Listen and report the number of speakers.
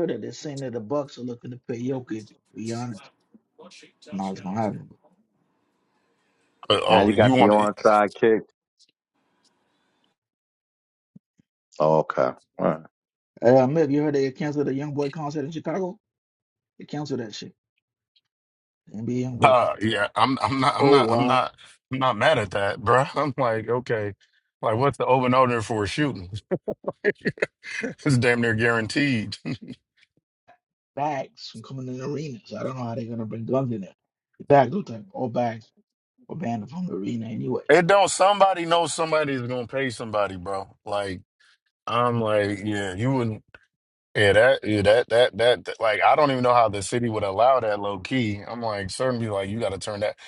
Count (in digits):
3